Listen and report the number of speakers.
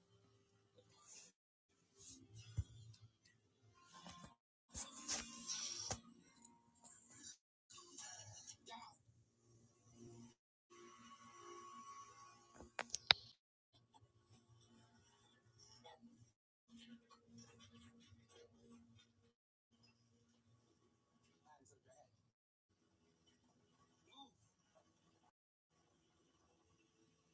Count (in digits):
0